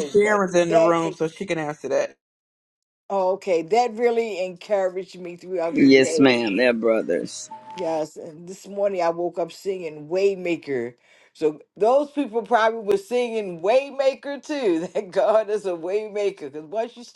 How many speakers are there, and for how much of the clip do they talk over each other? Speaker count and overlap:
3, about 11%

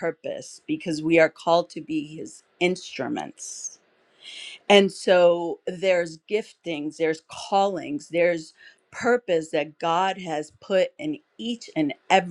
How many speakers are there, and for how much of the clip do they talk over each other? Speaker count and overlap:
1, no overlap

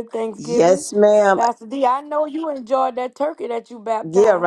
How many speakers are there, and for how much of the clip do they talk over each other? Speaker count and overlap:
2, about 21%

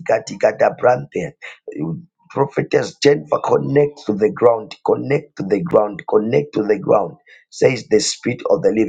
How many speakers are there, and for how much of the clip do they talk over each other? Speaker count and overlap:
1, no overlap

